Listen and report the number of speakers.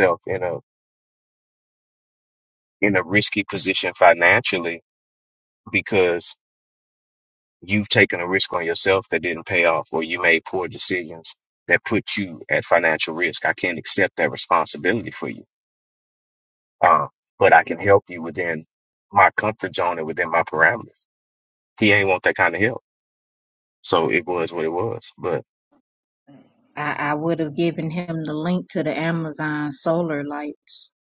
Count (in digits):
2